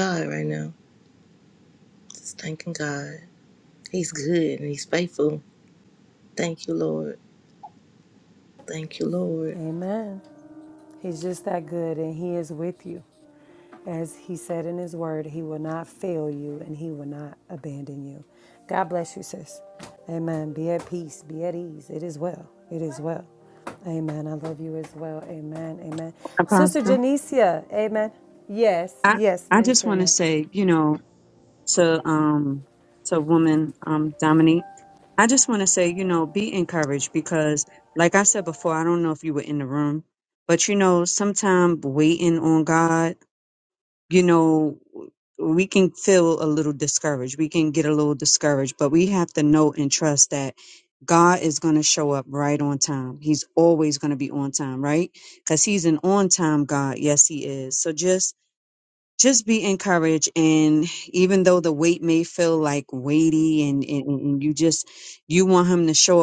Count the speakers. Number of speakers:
three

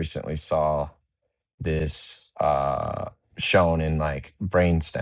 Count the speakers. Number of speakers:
one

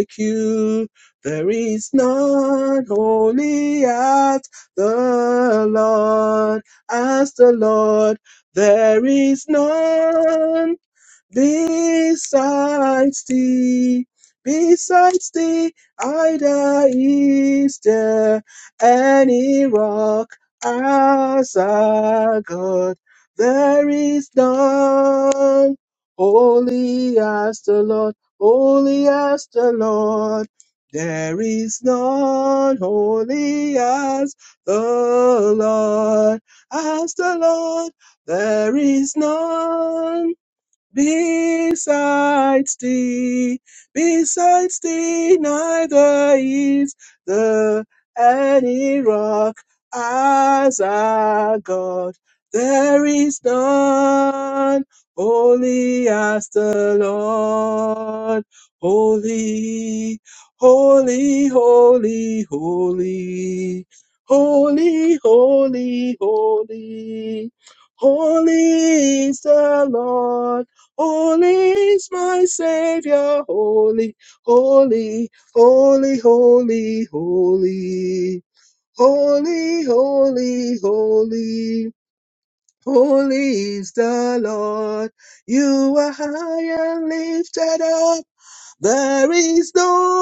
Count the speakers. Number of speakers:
one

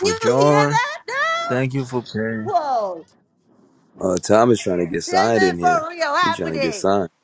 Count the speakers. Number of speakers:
three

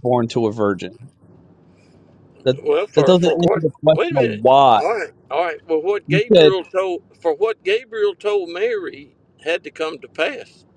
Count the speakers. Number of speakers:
two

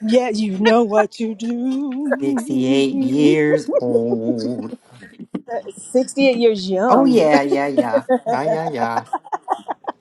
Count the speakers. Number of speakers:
two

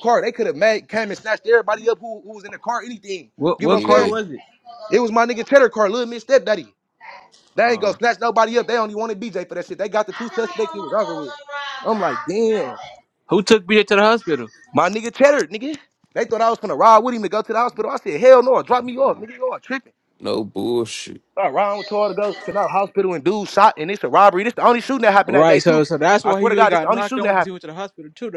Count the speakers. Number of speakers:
three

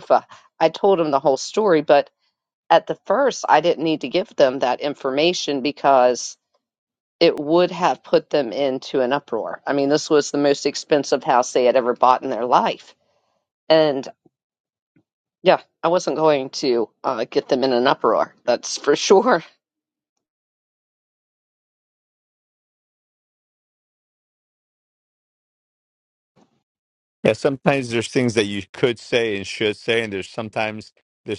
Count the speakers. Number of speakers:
two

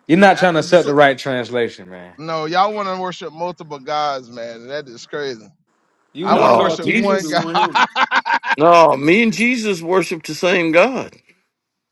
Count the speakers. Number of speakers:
three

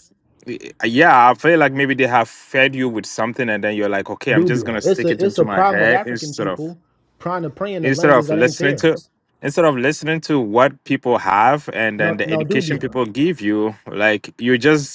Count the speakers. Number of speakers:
two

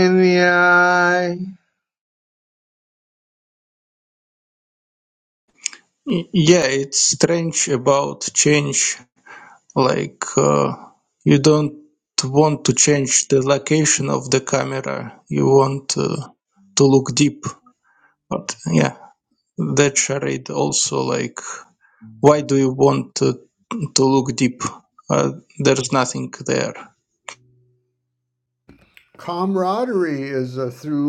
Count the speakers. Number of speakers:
three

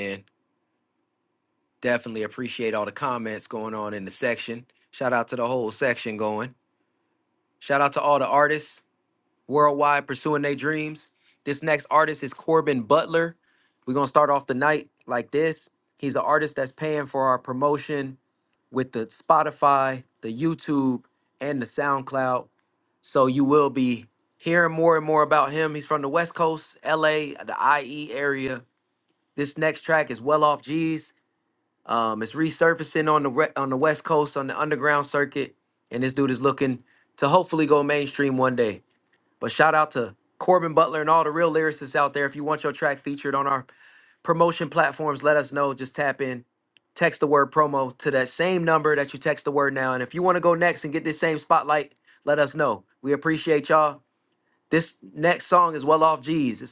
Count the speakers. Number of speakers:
one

